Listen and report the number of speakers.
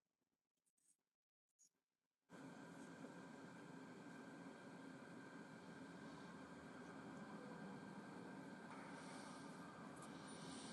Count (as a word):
zero